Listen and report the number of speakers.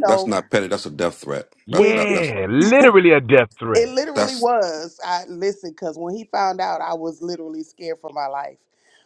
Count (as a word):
three